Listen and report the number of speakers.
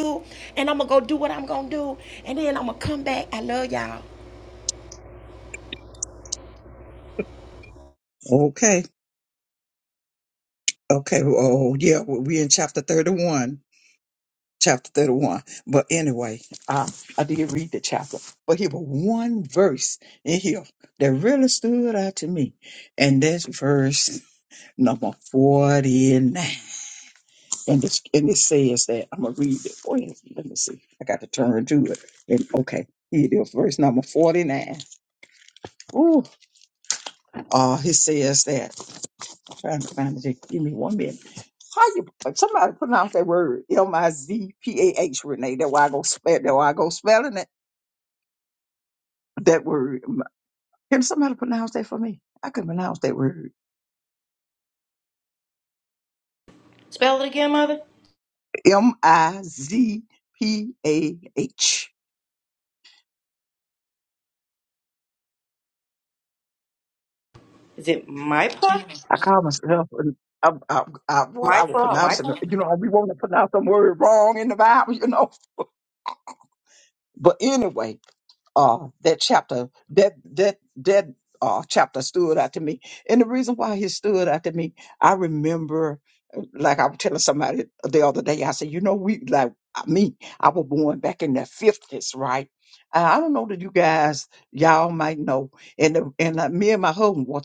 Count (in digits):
3